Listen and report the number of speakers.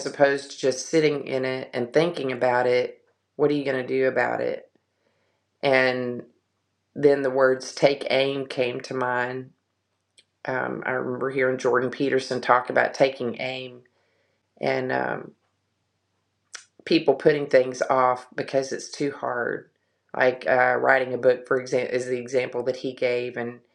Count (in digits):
1